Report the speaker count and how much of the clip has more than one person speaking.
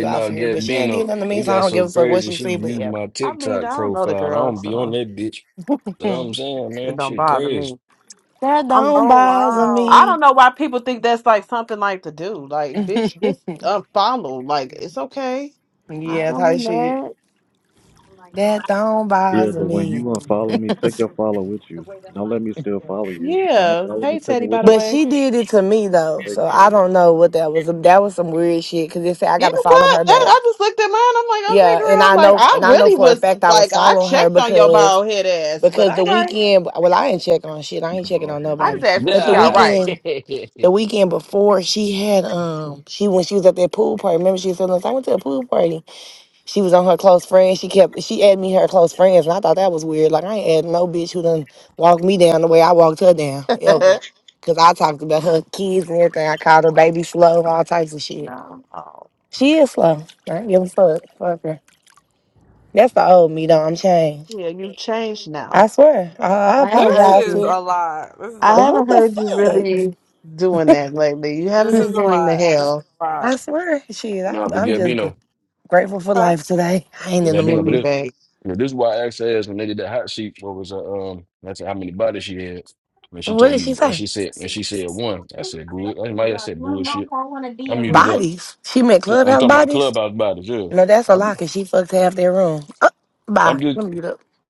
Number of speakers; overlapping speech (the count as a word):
five, about 28%